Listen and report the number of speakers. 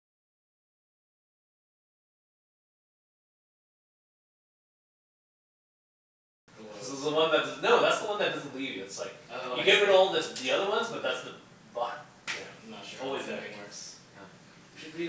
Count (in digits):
2